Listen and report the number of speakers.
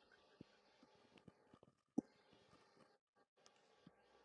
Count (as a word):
zero